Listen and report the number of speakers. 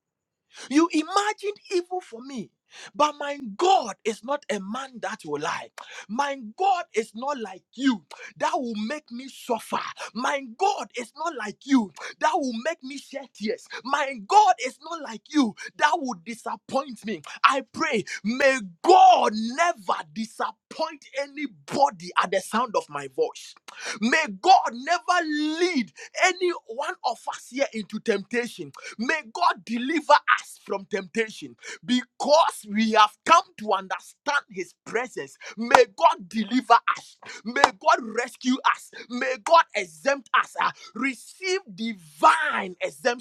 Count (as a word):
one